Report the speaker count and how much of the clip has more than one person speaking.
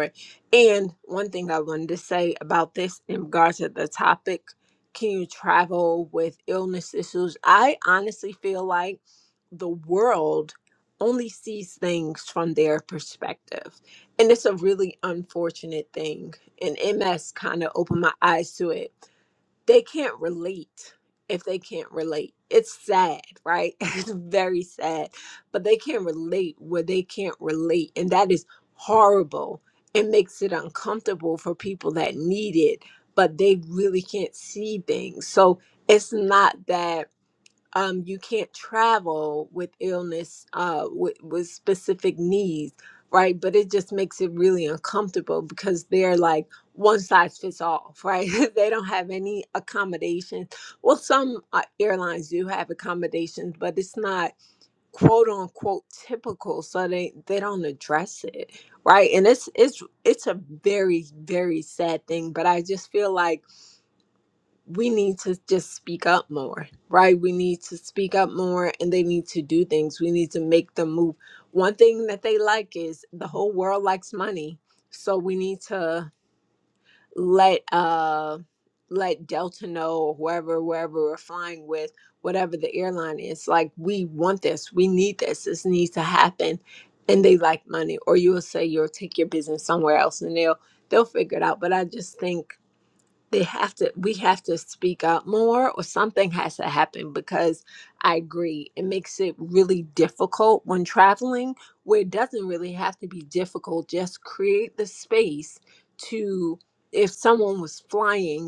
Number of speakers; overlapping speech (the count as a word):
one, no overlap